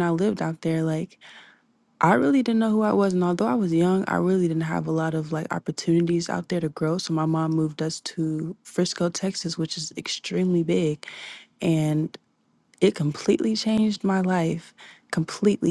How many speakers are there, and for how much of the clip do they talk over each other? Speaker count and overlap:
one, no overlap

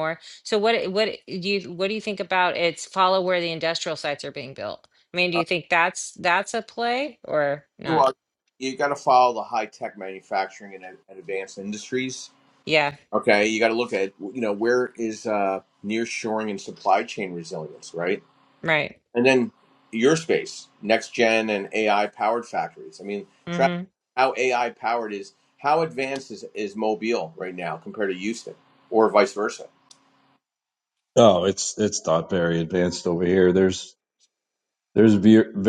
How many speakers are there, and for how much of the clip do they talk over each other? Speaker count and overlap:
three, about 1%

